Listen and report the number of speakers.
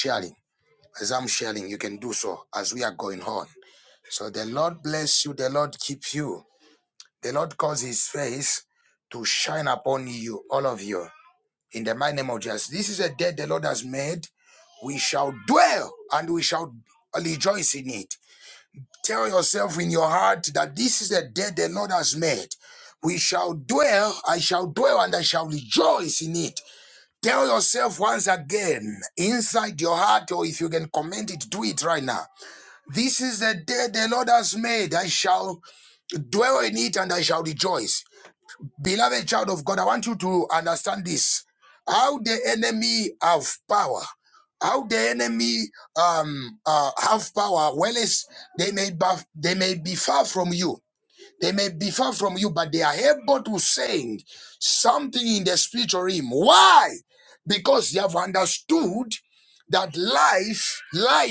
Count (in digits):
1